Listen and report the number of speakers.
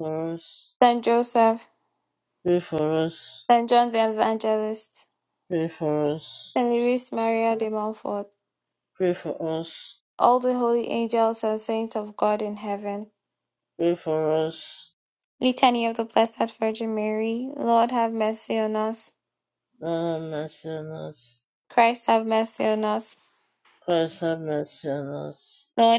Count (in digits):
2